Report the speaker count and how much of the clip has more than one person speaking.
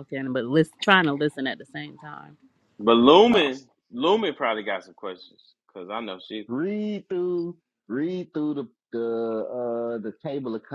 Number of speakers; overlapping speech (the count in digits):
3, about 1%